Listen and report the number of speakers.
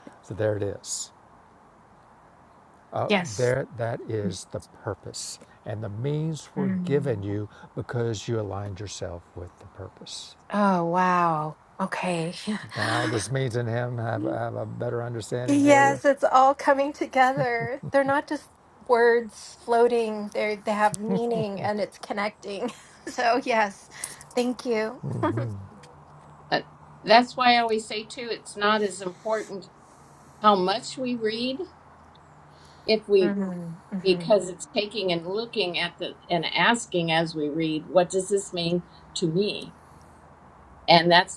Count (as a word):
three